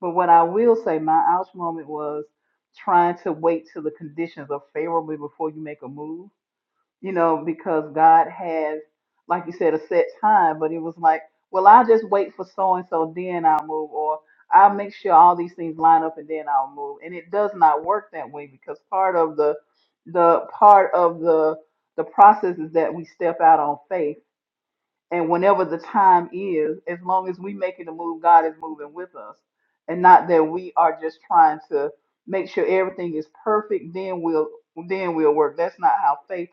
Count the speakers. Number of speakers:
1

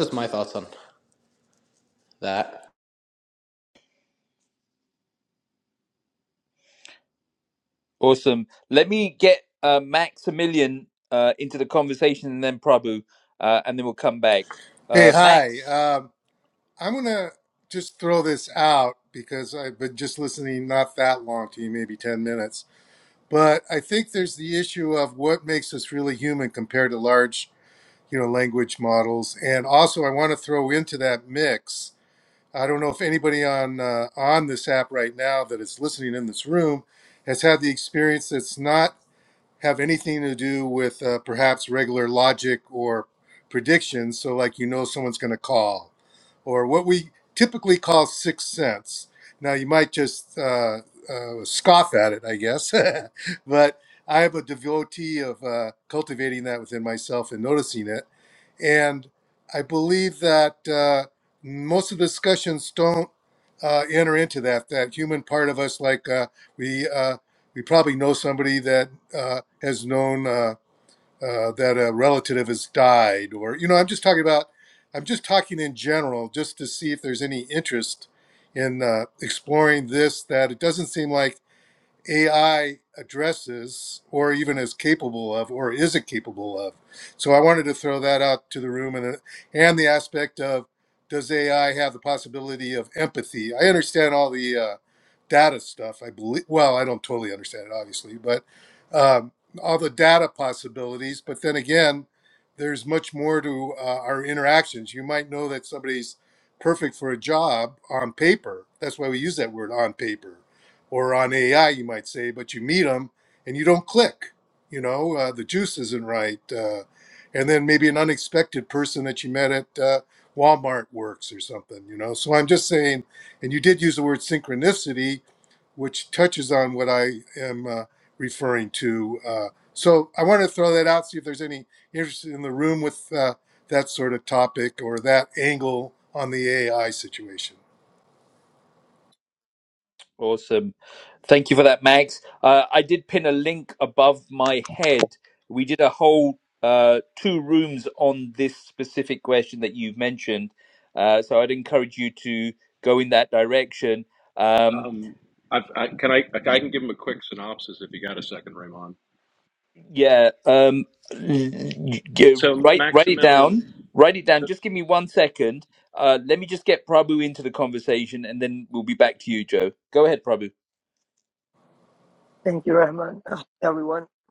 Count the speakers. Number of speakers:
5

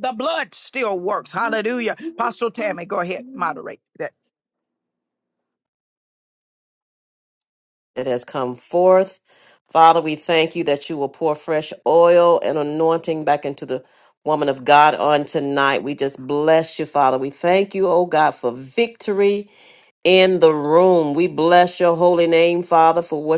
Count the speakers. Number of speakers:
2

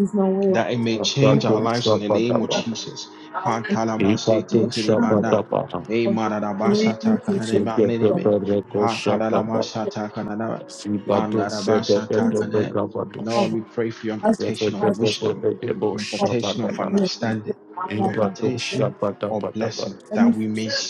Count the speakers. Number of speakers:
3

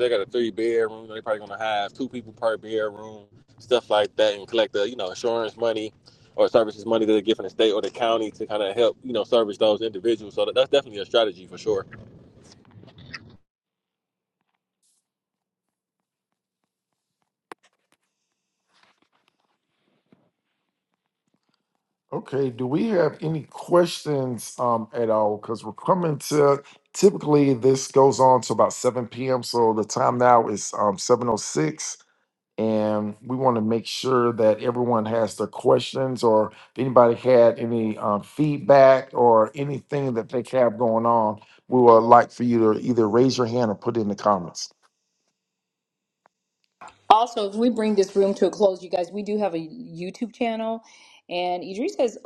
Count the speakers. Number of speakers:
3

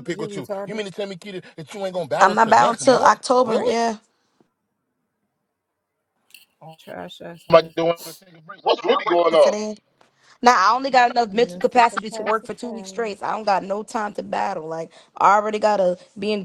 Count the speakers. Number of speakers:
3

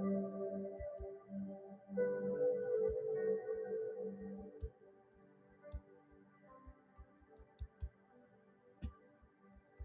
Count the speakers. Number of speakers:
0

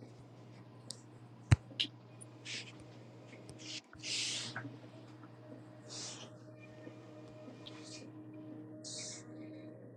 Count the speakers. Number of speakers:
0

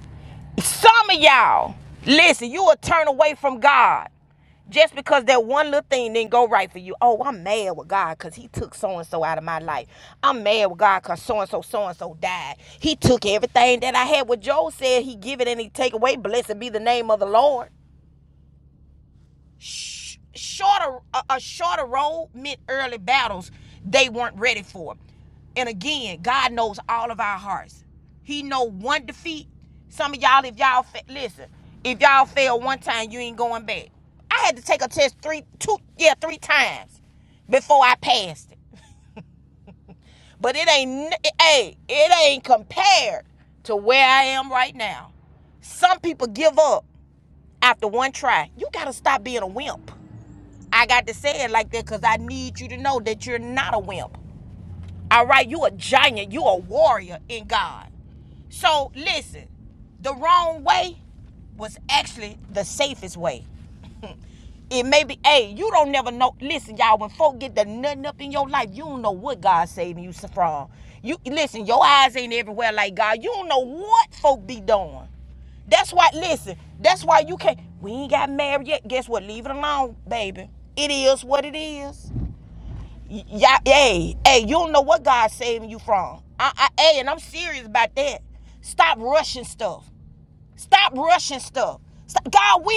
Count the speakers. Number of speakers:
1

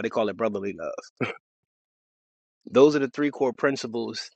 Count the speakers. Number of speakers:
1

